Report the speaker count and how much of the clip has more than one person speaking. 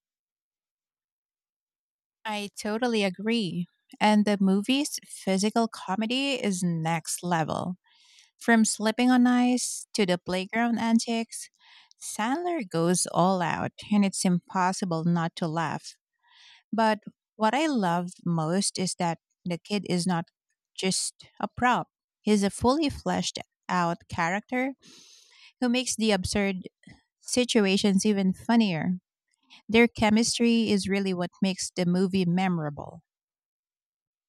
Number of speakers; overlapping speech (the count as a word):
one, no overlap